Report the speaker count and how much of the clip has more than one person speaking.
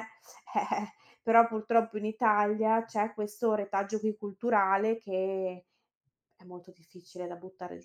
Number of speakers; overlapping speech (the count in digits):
1, no overlap